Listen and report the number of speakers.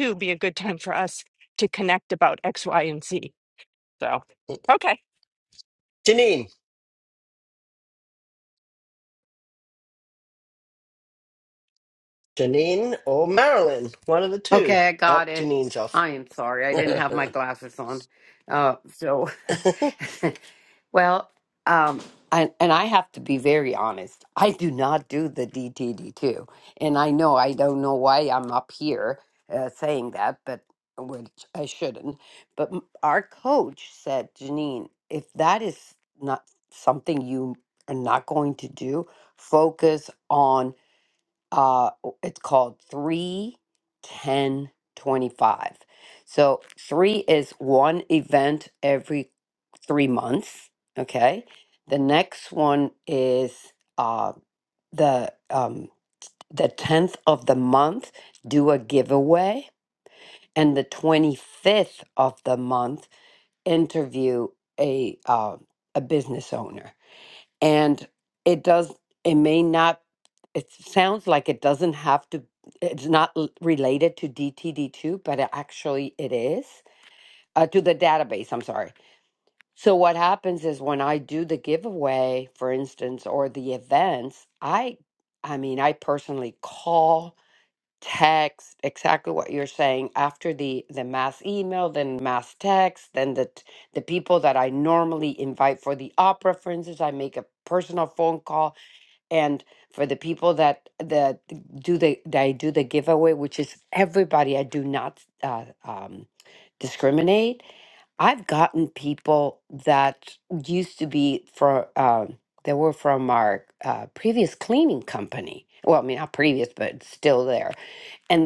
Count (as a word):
three